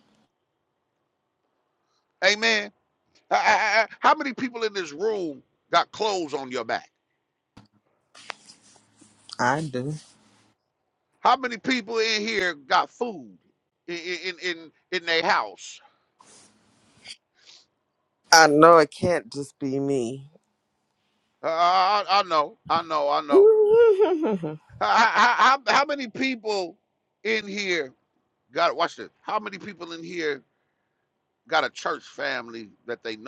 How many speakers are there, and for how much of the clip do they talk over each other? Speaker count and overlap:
2, about 1%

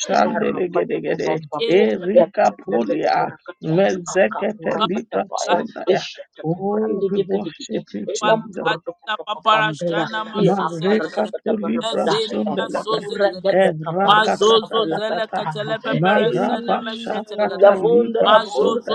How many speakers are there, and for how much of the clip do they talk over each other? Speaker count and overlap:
3, about 80%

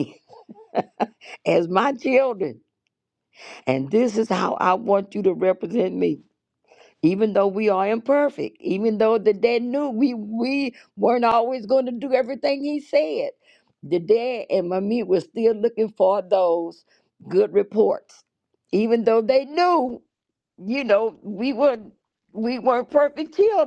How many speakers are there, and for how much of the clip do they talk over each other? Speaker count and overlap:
1, no overlap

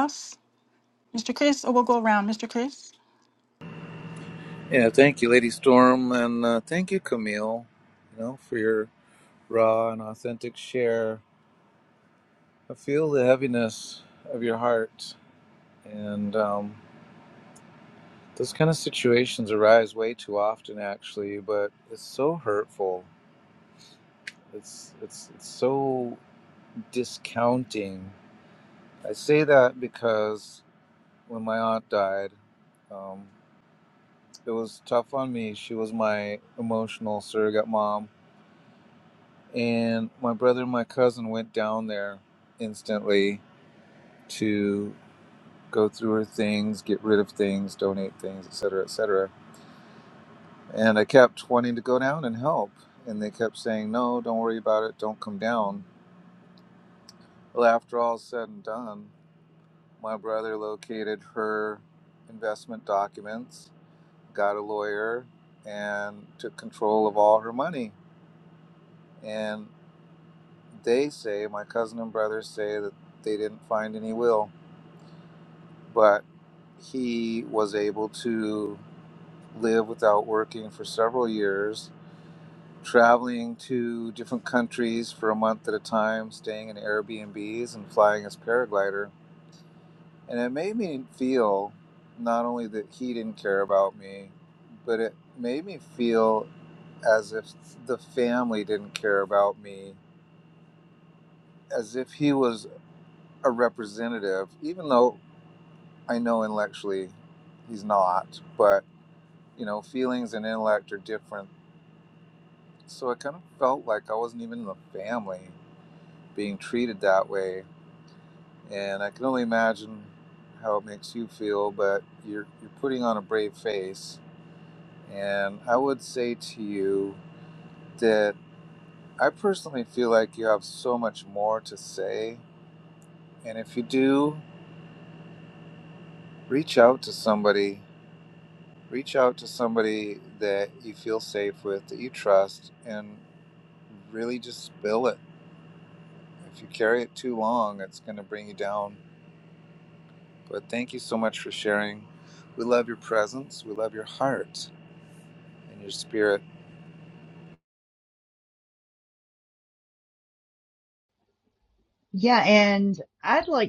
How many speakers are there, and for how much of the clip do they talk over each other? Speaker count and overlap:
3, no overlap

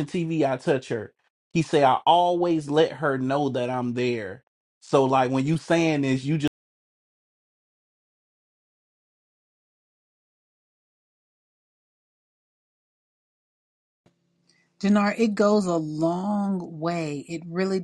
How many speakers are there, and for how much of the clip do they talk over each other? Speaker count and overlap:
2, no overlap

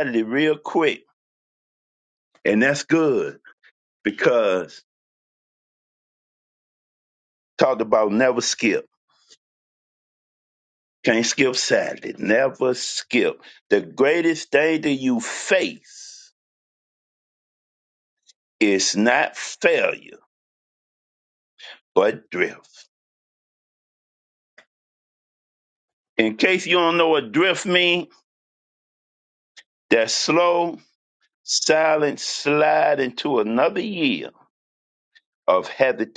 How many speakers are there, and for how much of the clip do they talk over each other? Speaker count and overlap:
1, no overlap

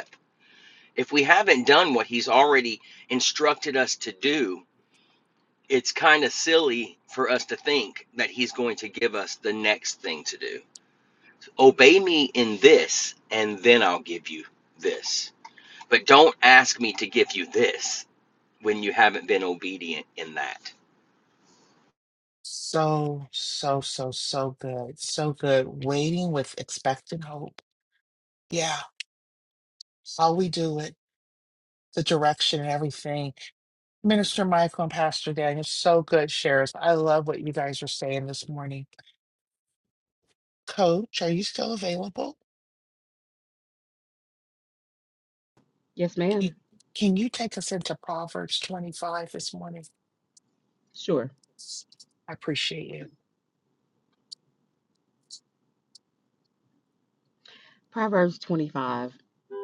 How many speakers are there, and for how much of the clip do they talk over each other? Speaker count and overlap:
3, under 1%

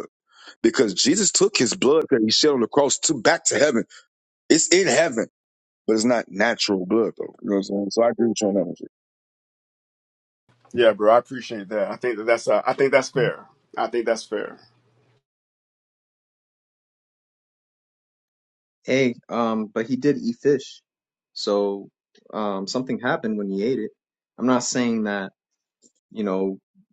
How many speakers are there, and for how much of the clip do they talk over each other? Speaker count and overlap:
3, no overlap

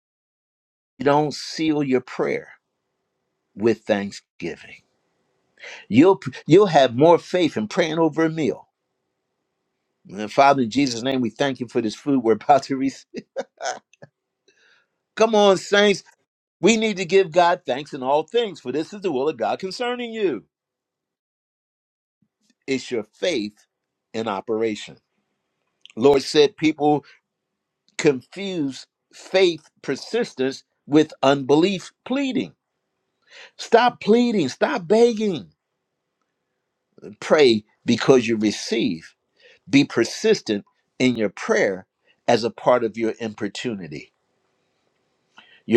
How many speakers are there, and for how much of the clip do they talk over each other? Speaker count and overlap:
1, no overlap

